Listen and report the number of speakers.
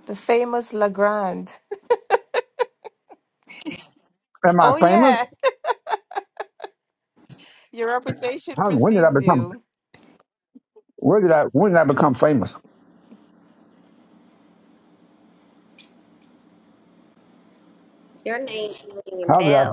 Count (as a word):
three